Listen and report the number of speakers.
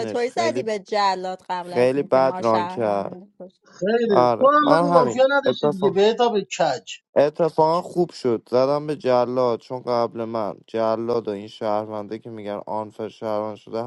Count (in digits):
3